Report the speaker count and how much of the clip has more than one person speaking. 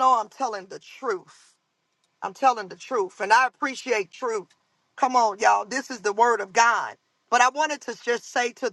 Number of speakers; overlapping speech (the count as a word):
one, no overlap